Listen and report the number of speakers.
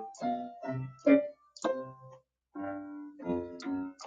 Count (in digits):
0